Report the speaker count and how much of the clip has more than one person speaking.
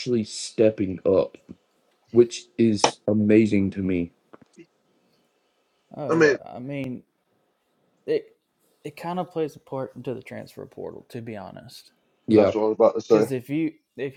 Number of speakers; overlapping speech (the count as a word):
three, about 5%